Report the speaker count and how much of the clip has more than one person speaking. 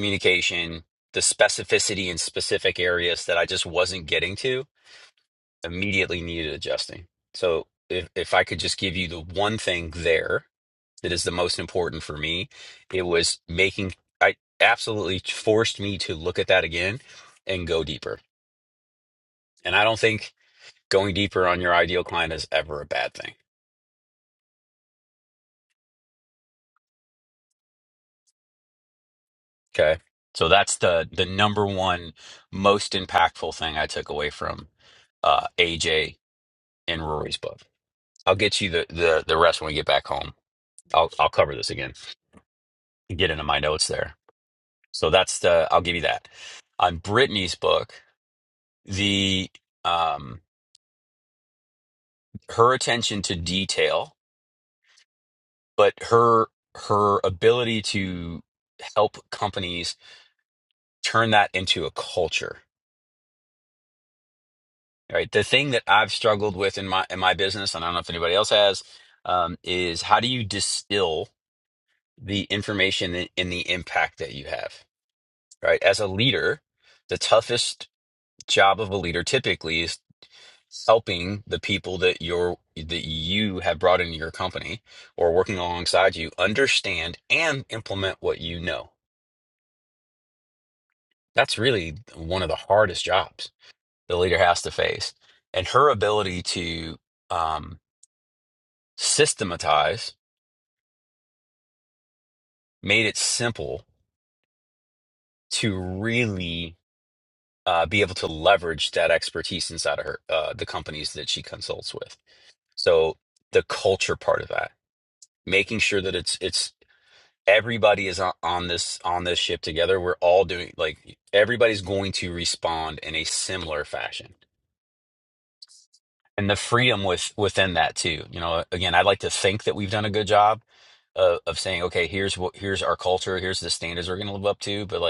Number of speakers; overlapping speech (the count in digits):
1, no overlap